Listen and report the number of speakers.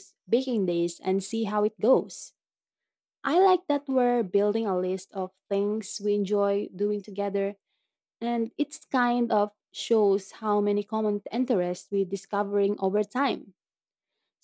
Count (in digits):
1